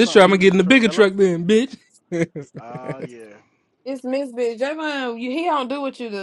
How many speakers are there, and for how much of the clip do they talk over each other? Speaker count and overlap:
3, about 18%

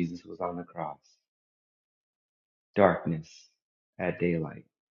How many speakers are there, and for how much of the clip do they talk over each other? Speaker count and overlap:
1, no overlap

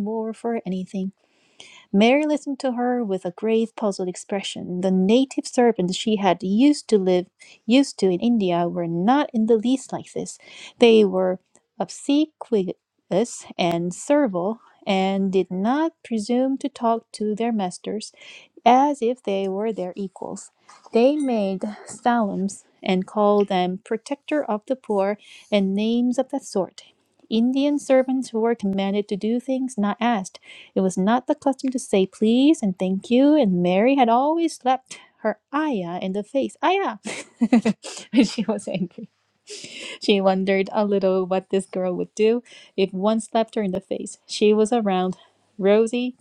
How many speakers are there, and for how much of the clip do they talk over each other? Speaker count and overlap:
1, no overlap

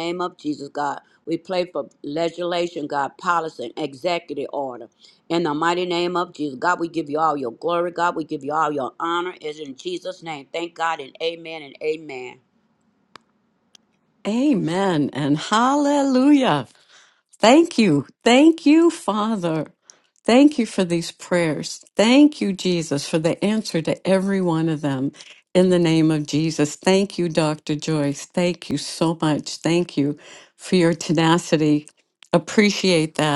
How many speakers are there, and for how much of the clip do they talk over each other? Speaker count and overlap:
2, no overlap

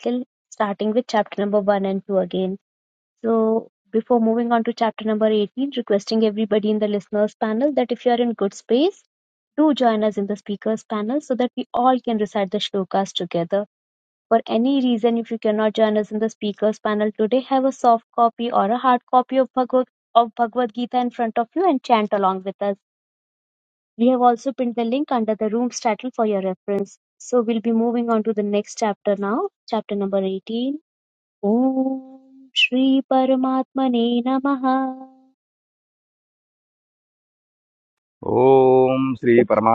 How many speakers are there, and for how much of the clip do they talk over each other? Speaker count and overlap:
2, no overlap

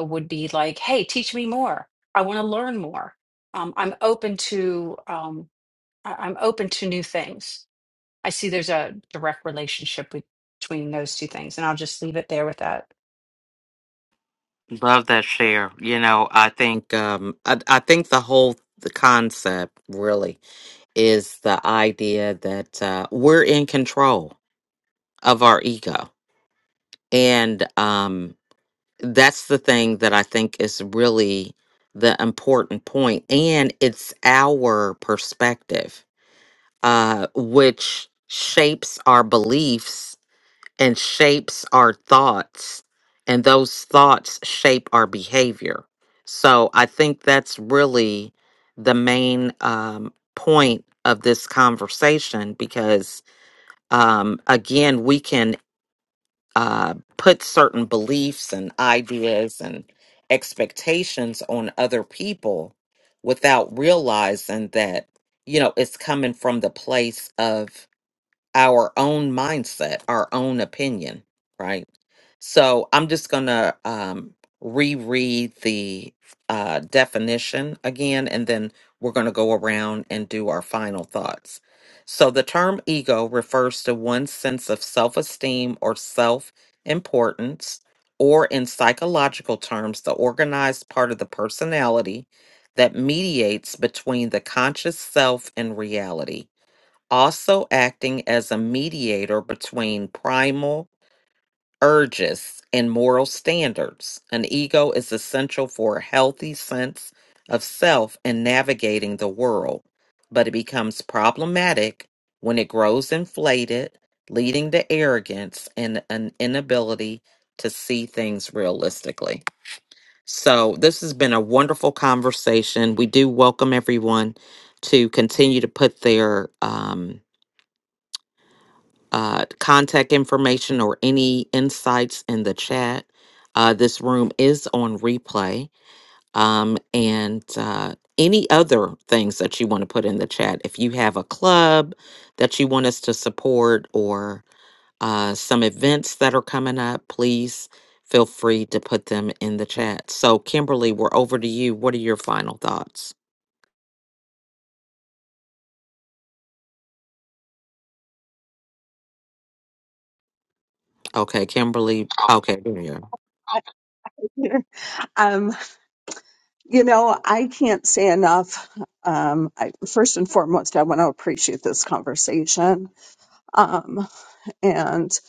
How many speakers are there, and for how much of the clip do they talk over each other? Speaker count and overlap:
3, no overlap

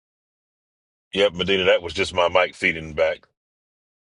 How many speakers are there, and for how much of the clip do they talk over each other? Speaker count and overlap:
1, no overlap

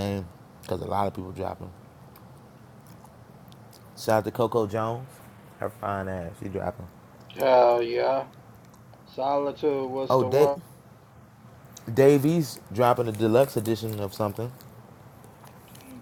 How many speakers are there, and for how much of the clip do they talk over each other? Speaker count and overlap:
2, about 3%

